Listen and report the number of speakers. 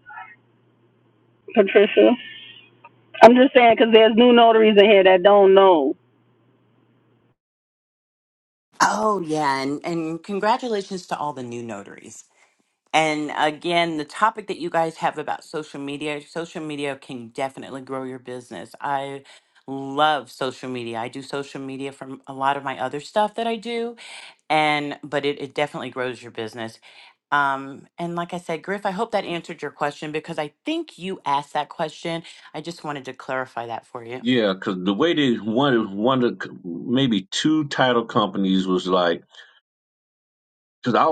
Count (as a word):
three